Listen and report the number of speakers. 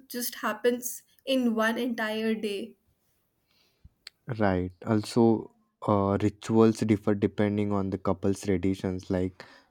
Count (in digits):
2